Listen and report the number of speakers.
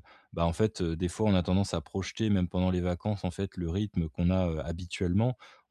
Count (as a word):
one